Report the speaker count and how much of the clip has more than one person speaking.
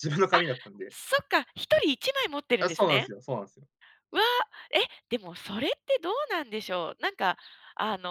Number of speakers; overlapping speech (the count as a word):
two, about 8%